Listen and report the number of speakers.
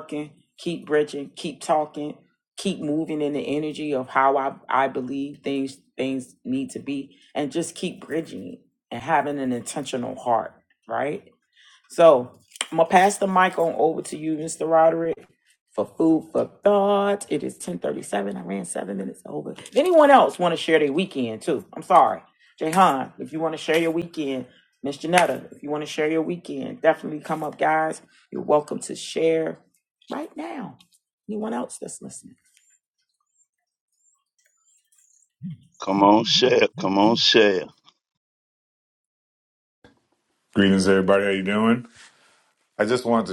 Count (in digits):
3